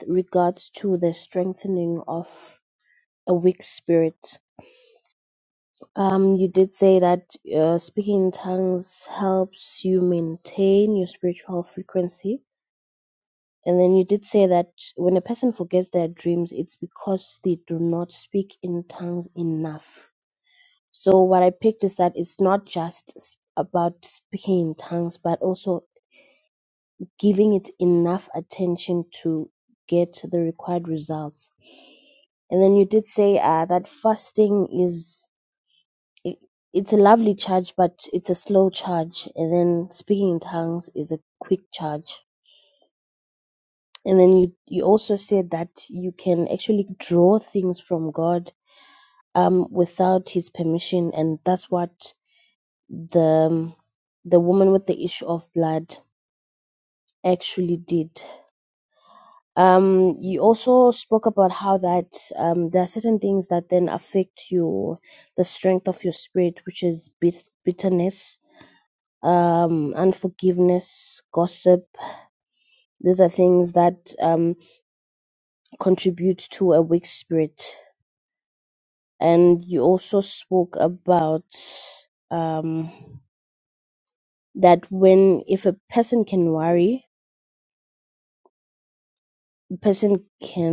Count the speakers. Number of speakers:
1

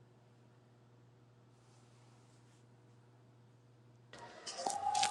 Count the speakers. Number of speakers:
0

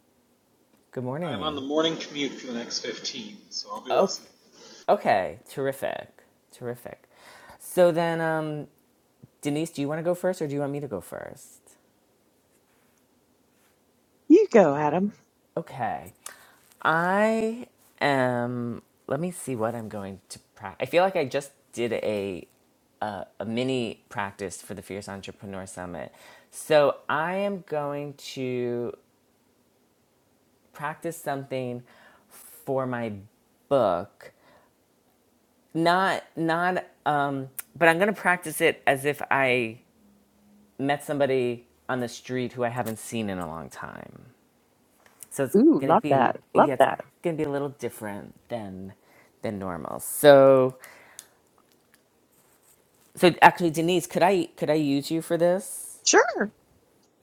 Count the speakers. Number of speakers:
3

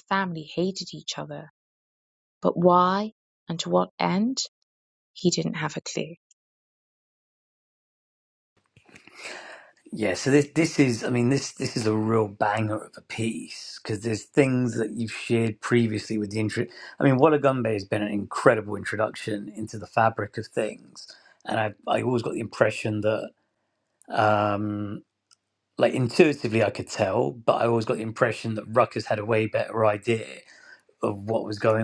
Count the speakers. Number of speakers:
2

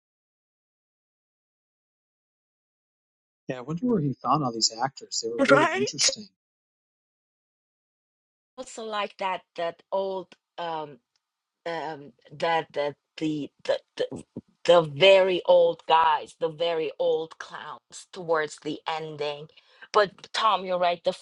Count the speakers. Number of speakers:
2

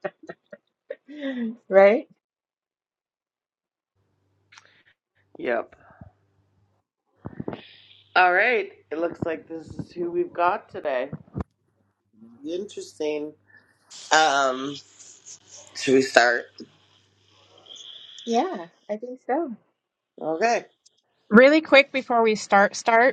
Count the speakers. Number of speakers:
3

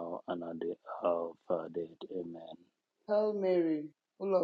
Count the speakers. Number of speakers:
2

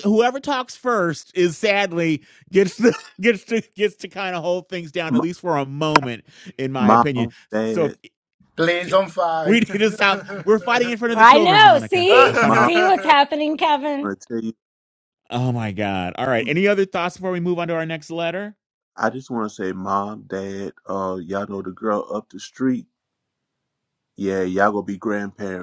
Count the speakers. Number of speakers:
4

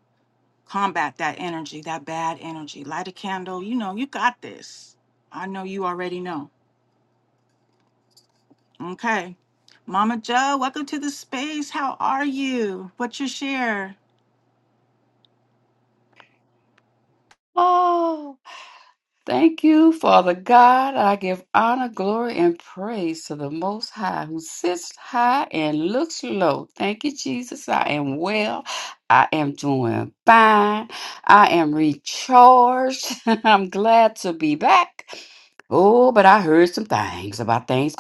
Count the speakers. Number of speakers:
2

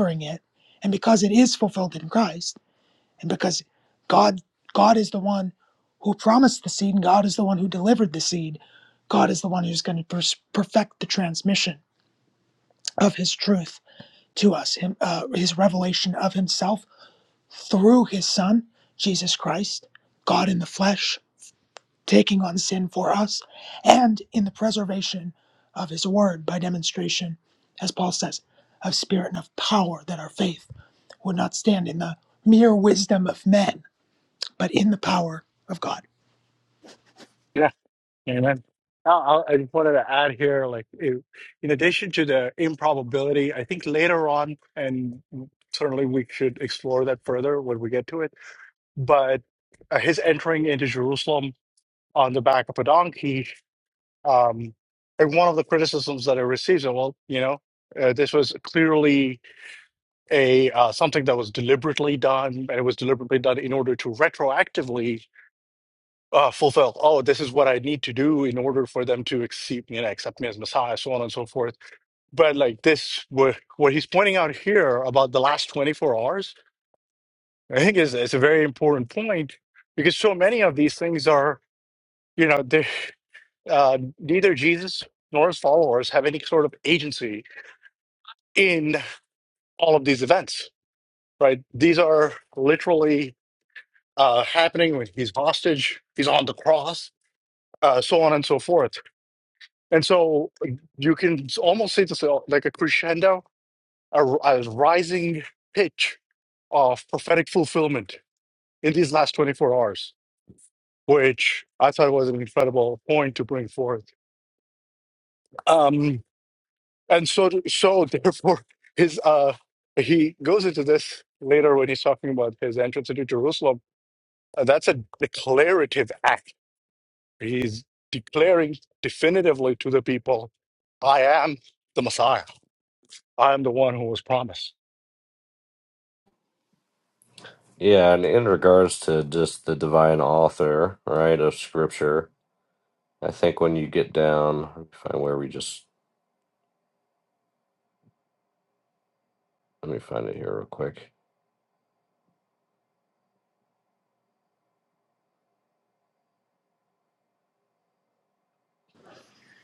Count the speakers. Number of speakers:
3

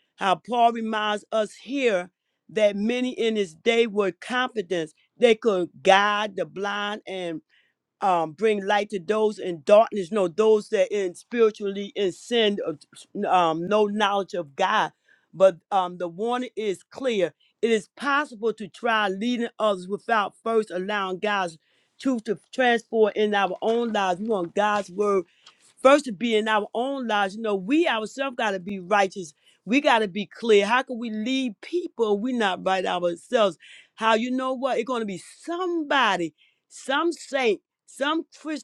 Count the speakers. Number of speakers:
1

